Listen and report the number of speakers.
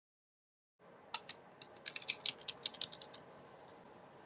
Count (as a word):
zero